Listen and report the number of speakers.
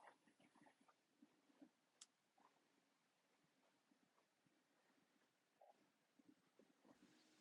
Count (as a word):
zero